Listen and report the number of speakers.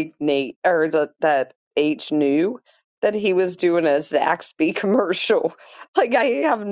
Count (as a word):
one